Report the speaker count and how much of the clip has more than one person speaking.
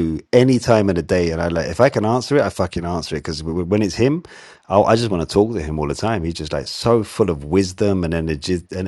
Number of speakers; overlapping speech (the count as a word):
one, no overlap